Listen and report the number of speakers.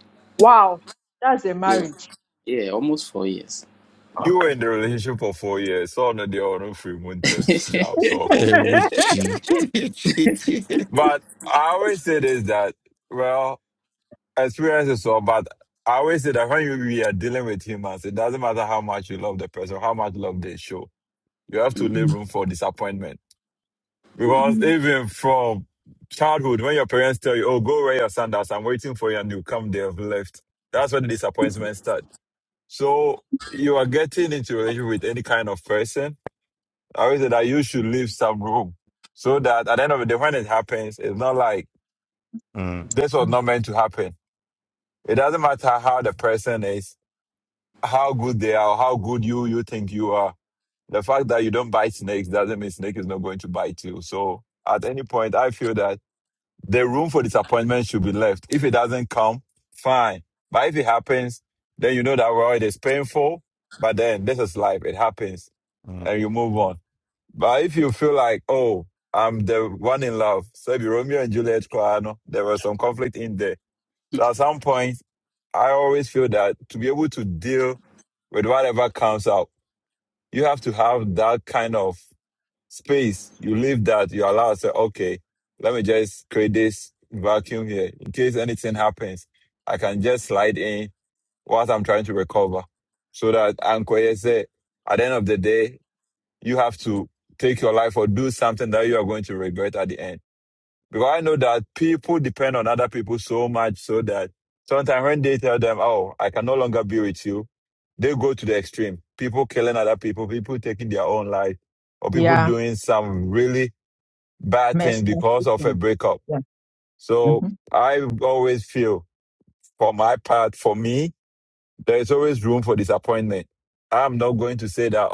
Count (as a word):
four